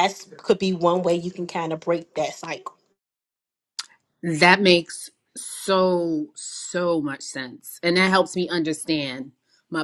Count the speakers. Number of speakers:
two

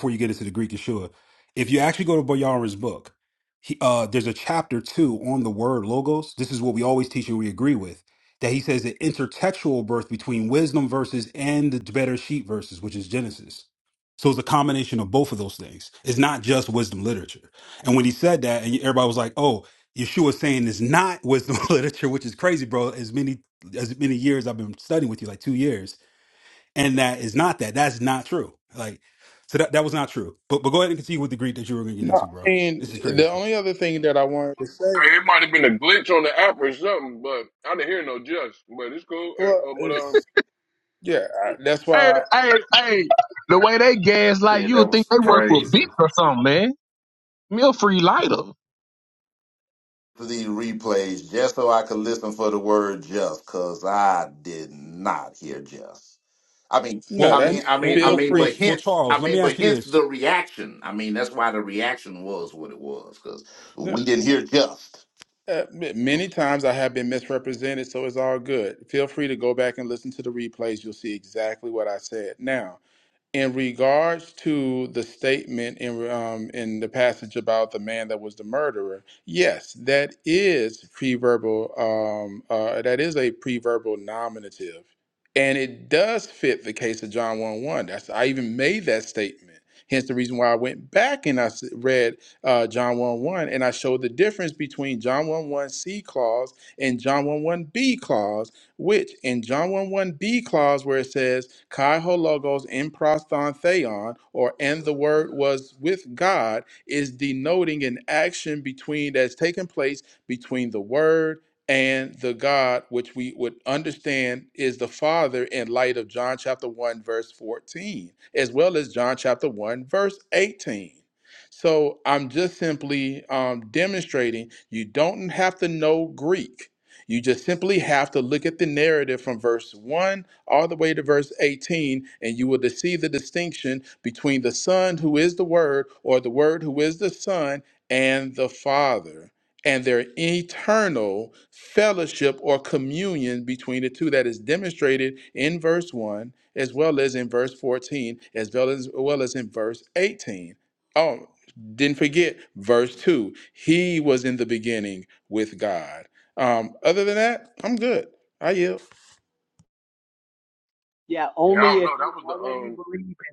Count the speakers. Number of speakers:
six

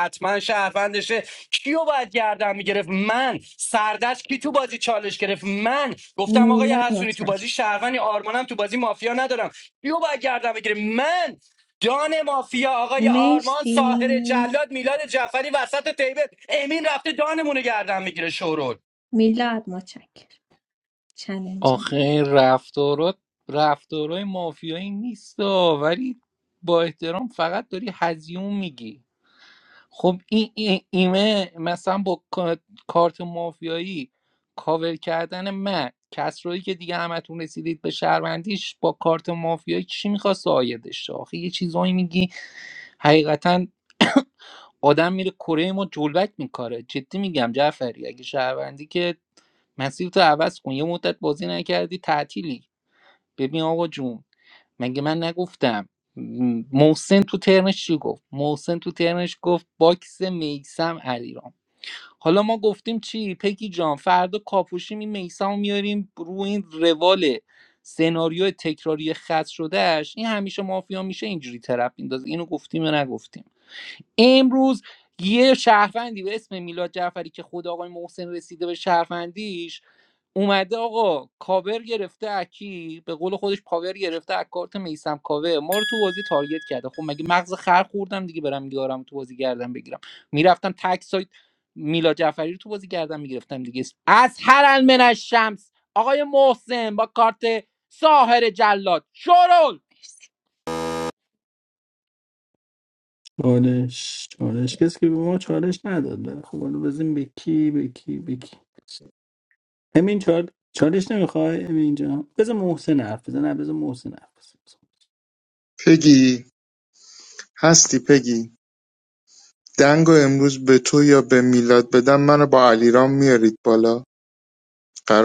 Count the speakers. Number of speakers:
five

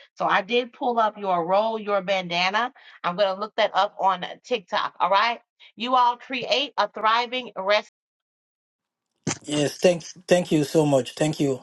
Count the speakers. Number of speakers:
two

